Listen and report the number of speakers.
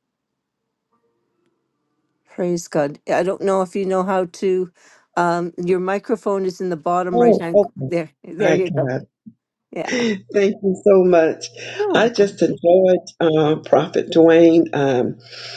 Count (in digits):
2